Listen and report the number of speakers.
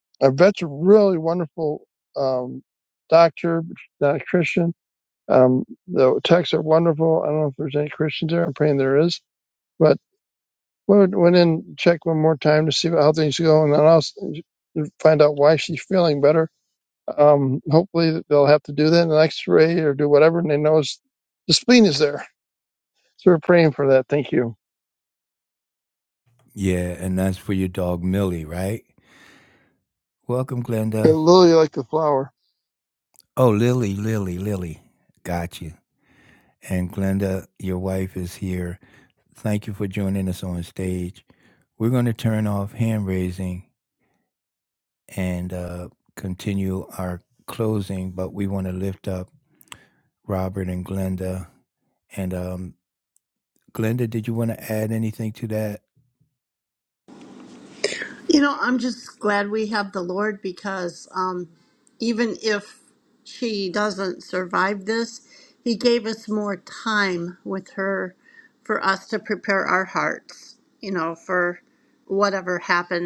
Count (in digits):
3